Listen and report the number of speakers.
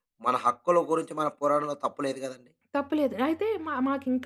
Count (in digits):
2